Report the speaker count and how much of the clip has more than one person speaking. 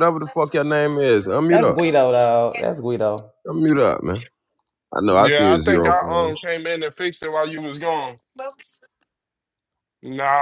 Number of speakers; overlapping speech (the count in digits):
3, about 15%